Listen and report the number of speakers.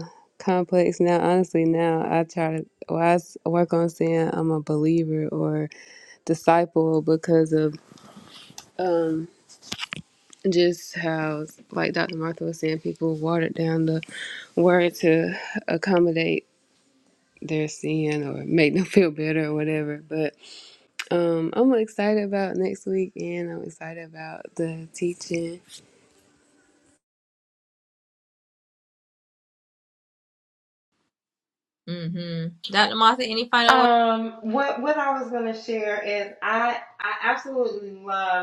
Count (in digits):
3